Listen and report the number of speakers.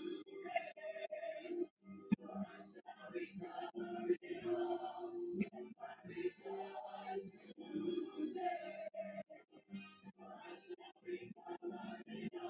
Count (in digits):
0